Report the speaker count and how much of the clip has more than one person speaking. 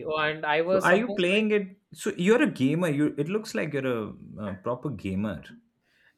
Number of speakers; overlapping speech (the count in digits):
2, about 12%